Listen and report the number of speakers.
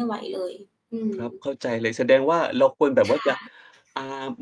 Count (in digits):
2